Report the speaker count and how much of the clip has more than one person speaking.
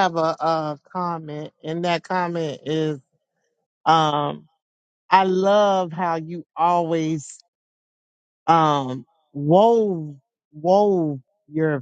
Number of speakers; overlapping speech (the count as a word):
one, no overlap